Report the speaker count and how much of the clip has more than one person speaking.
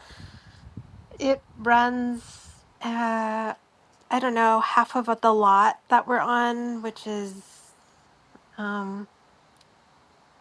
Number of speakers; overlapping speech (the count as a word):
one, no overlap